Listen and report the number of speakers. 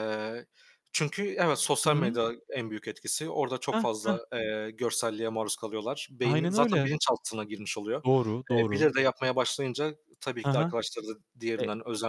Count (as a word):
two